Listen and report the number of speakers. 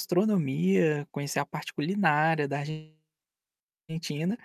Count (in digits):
1